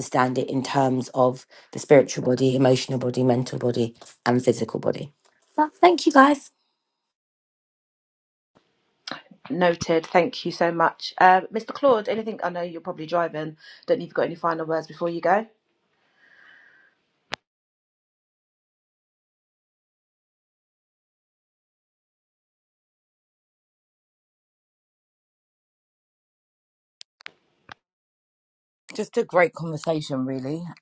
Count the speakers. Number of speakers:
3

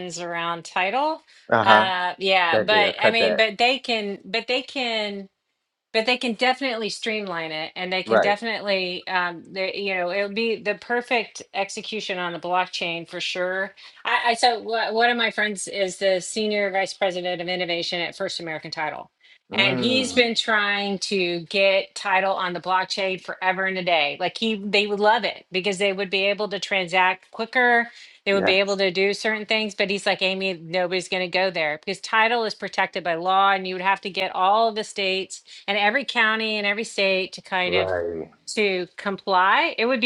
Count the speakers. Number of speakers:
2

